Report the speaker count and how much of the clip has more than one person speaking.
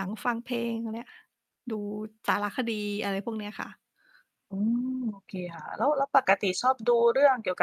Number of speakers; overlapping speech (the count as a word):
two, no overlap